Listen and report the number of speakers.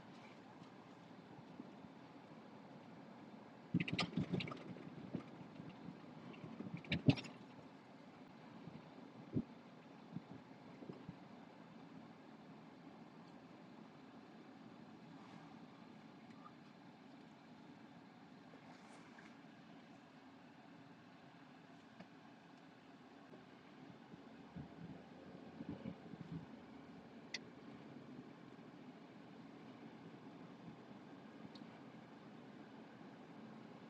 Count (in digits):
0